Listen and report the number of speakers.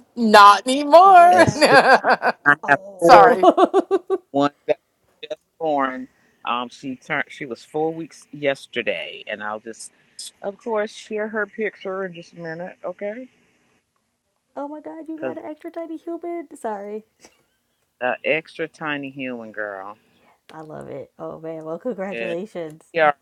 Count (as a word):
three